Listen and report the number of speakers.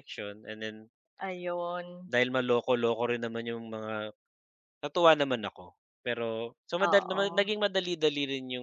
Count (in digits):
2